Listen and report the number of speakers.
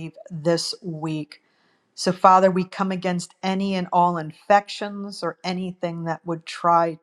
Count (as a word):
one